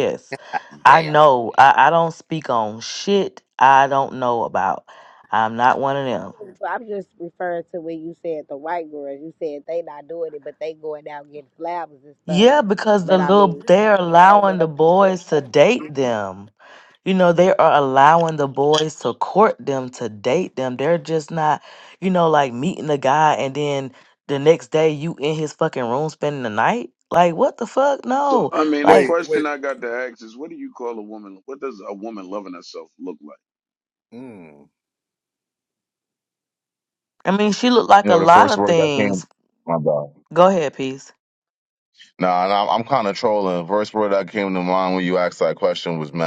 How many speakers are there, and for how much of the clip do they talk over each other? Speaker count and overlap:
5, about 12%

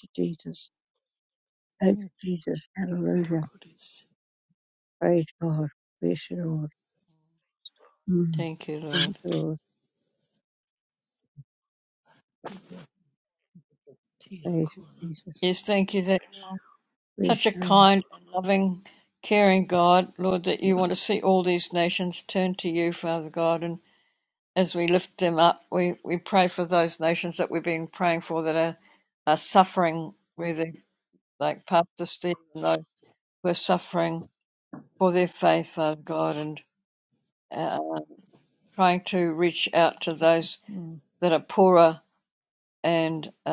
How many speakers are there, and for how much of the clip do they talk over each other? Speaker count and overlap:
3, about 3%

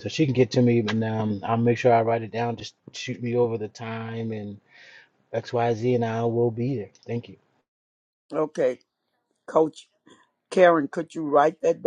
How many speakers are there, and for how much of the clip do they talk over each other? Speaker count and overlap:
2, no overlap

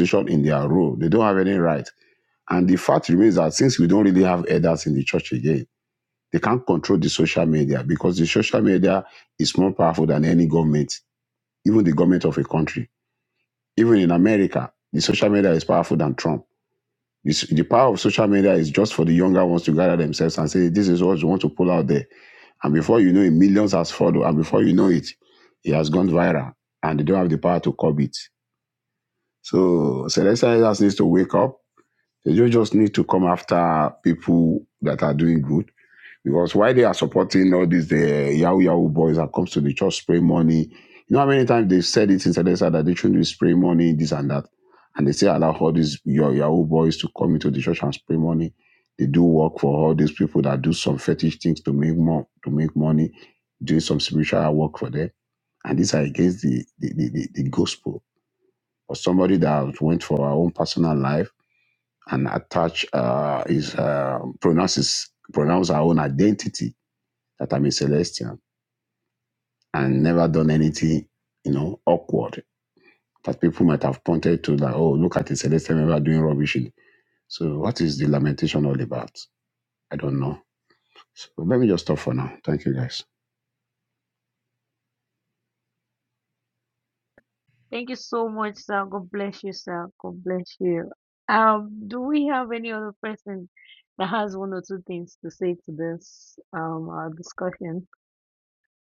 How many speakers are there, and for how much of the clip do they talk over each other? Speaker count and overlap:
2, no overlap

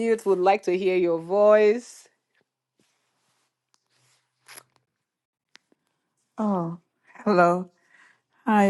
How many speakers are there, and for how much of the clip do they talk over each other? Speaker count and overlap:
2, no overlap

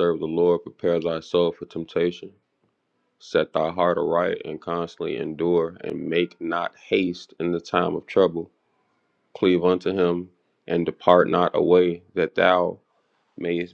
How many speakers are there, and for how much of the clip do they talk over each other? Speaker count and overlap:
1, no overlap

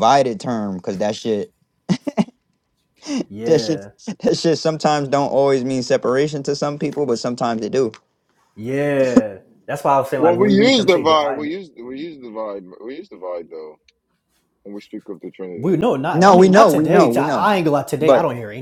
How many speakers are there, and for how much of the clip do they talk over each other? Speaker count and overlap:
3, about 19%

